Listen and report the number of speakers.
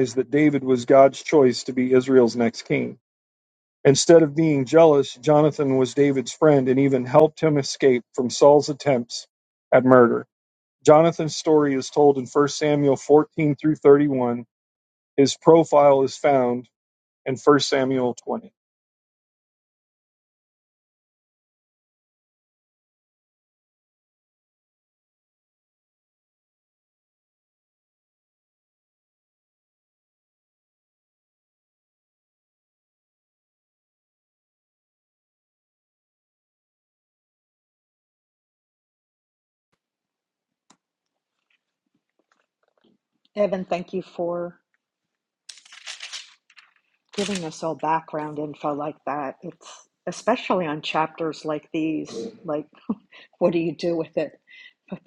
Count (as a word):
two